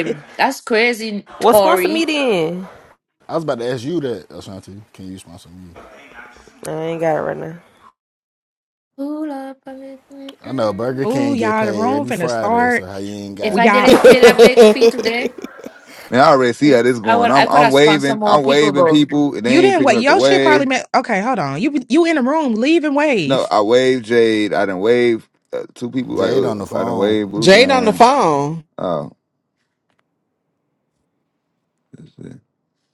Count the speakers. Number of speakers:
6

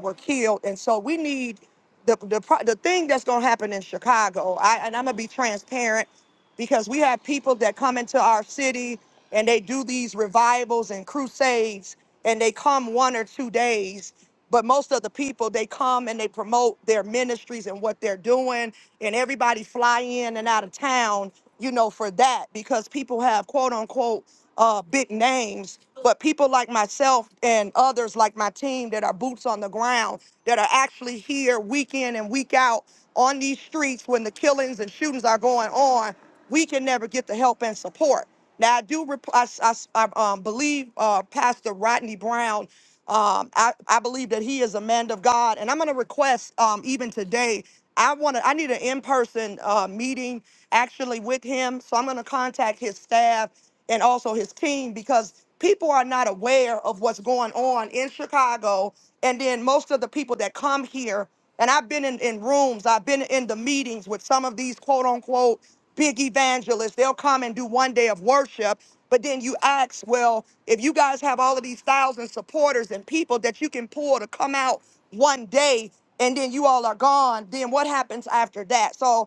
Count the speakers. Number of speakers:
1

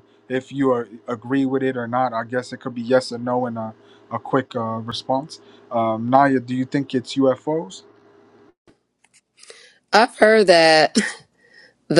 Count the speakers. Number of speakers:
2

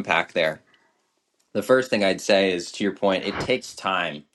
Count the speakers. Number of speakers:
1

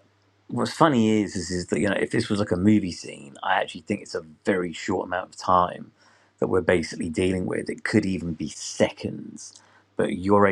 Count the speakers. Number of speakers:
1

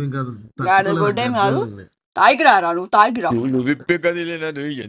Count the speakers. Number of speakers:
3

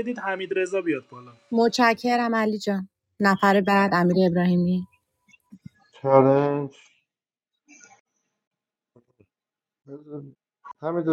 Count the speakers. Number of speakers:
3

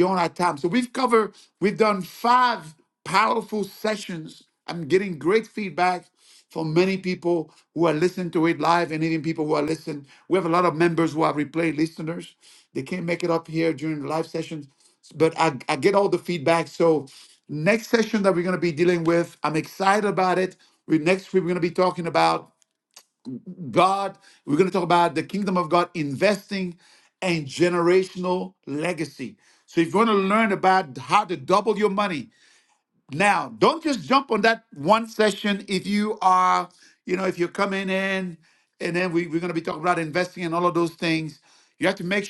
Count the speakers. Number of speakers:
1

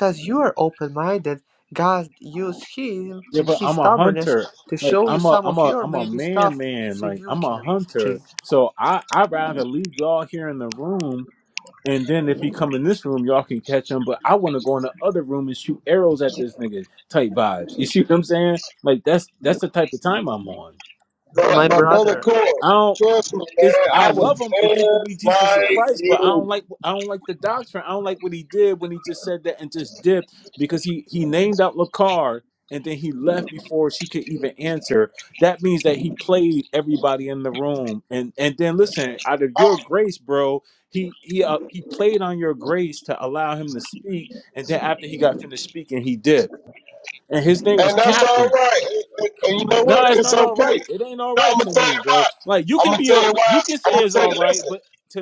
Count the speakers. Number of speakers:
3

